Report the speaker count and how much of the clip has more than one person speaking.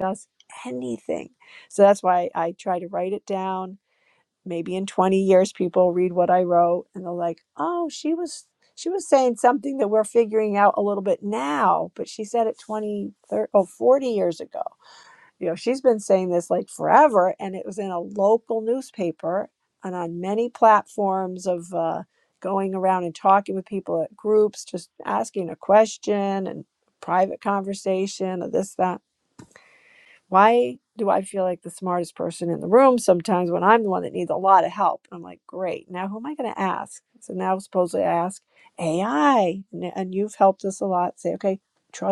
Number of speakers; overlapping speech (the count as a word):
one, no overlap